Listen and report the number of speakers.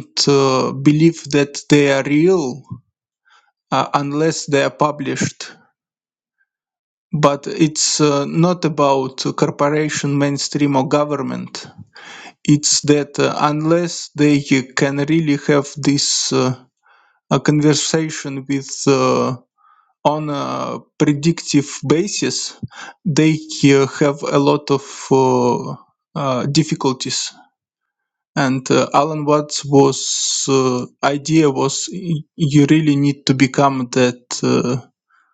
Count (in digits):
1